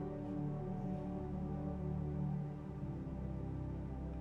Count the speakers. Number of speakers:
0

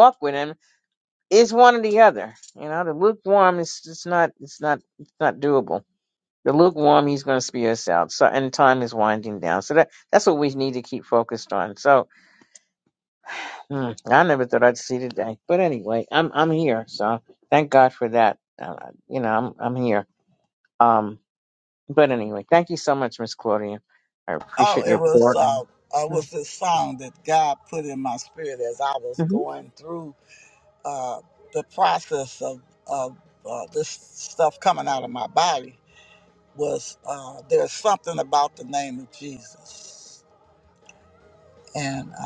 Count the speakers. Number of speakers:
2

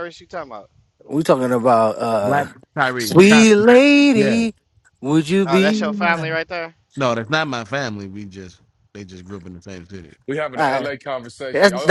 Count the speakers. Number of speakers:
4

